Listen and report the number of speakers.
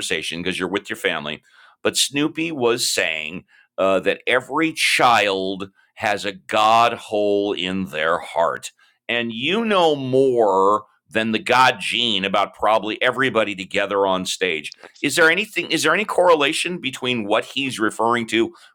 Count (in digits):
1